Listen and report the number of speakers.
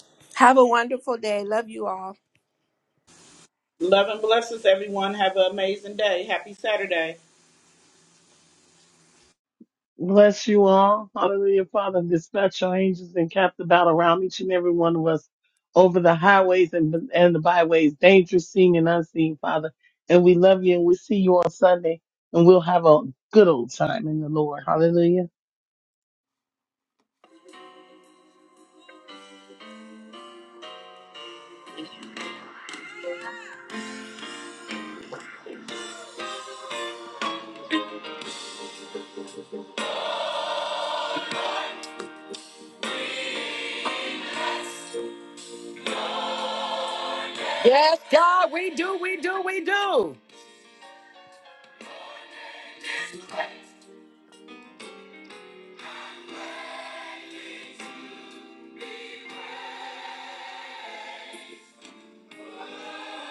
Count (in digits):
4